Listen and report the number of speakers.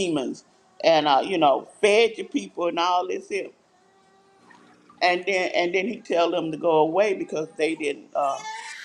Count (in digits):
1